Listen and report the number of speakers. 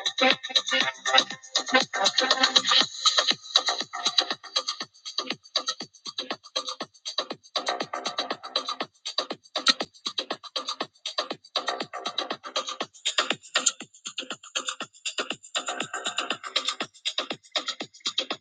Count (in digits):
0